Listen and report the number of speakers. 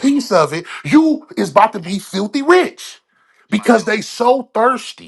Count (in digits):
1